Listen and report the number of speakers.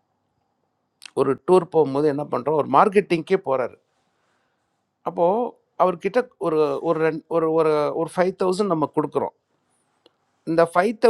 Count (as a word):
one